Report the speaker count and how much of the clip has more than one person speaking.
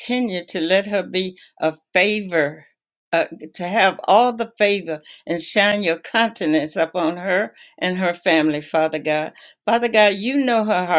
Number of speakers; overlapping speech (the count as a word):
one, no overlap